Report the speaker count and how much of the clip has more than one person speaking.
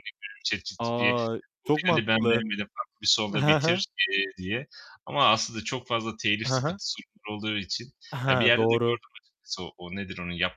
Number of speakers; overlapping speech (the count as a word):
two, about 26%